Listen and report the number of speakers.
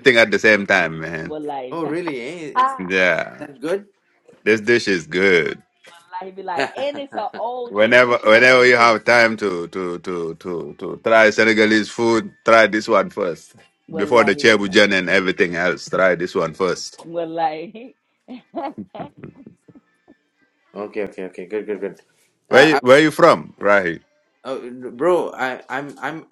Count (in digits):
3